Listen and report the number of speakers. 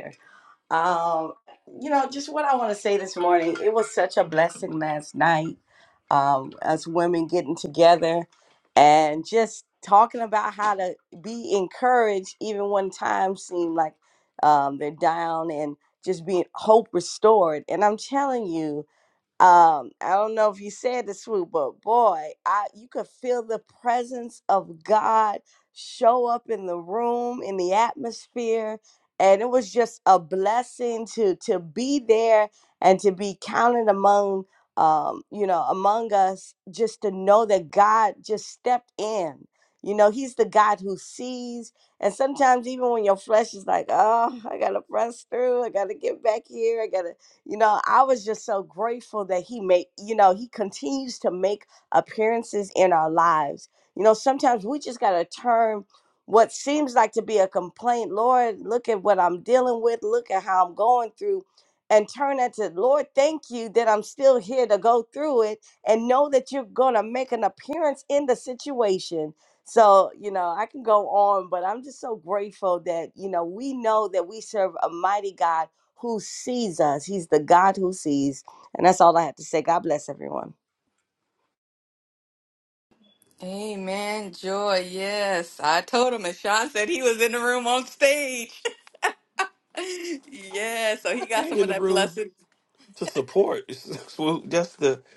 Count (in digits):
3